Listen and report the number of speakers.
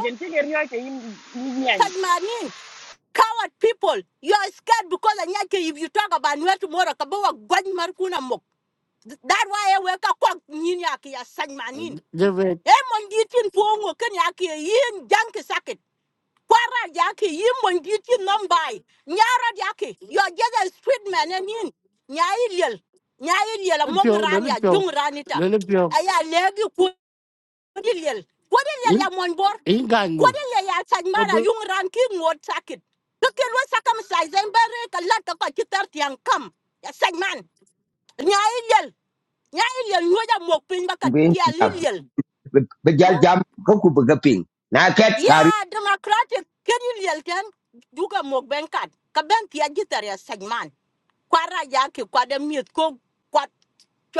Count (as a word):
four